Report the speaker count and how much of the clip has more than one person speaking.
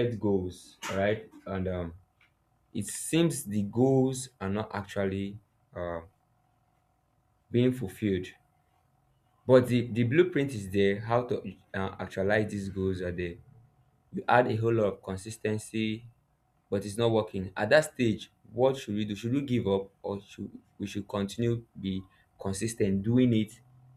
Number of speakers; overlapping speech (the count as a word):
one, no overlap